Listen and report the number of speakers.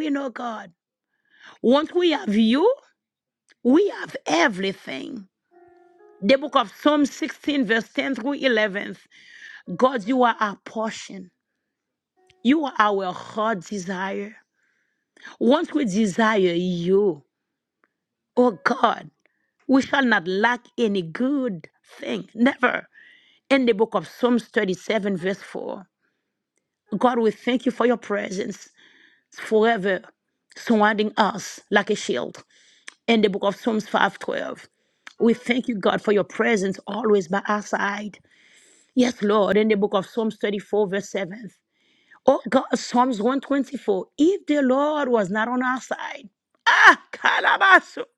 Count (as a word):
one